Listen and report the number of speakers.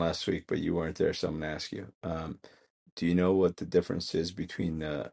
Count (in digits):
1